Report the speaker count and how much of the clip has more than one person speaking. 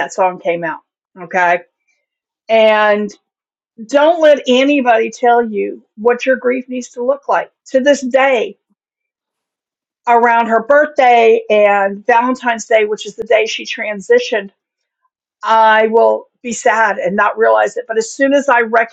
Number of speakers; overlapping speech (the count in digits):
1, no overlap